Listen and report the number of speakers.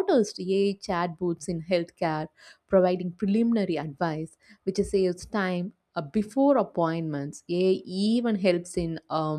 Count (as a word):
one